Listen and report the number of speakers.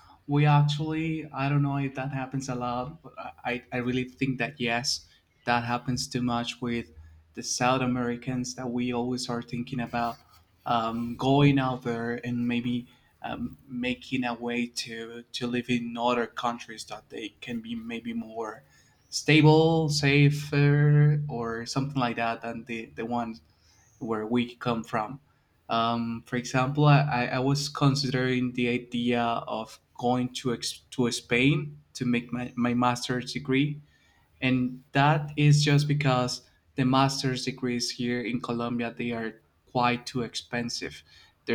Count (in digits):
1